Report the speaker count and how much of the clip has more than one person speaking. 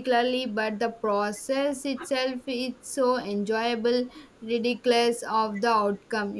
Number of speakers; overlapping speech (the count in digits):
1, no overlap